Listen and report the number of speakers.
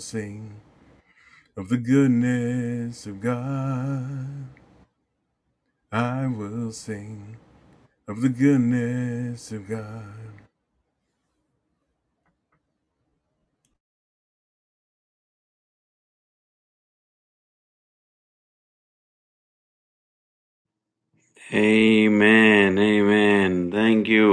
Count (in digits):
2